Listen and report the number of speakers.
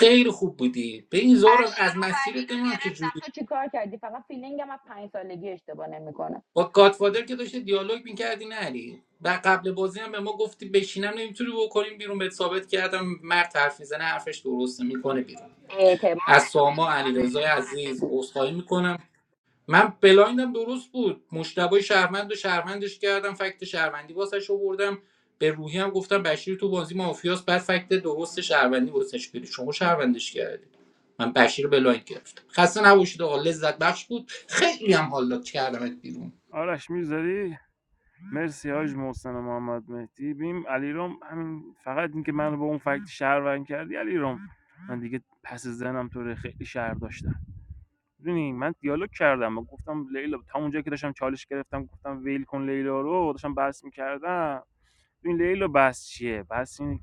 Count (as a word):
three